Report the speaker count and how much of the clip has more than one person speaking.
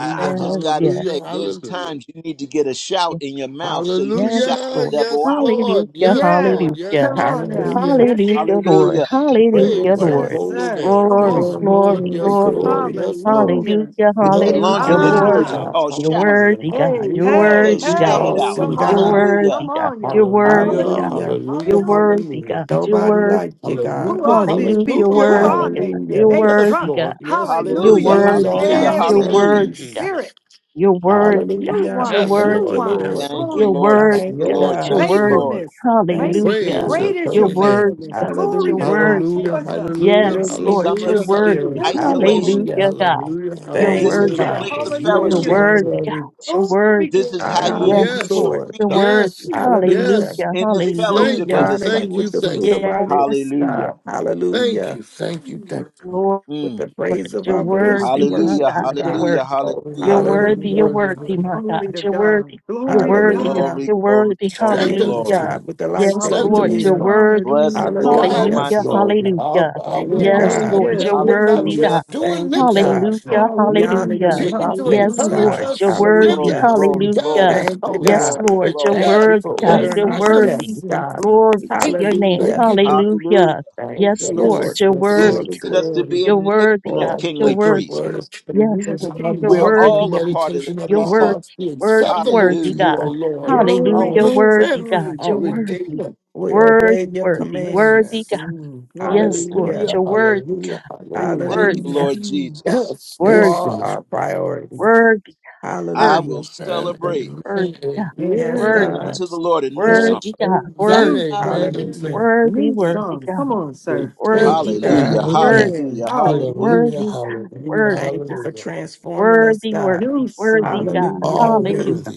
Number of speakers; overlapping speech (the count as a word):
five, about 85%